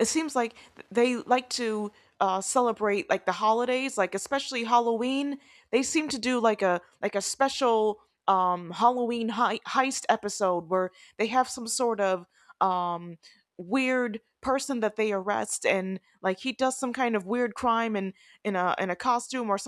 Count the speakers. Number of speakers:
1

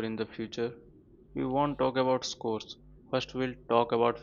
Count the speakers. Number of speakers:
1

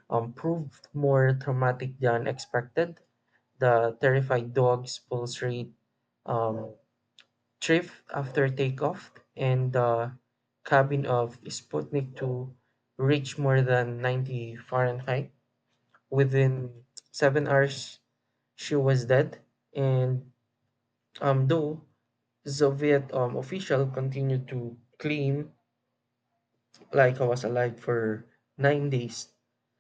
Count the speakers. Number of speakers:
1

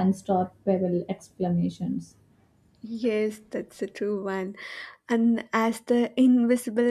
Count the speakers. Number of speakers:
2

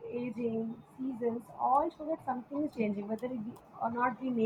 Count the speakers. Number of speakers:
1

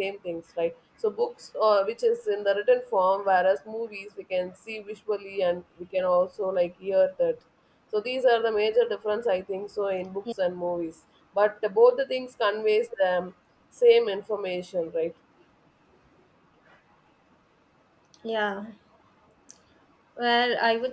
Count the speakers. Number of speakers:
2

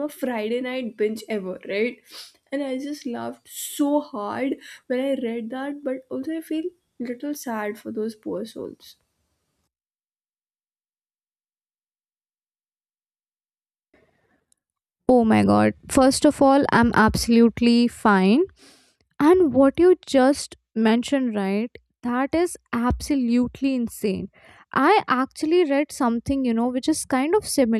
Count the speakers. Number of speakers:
2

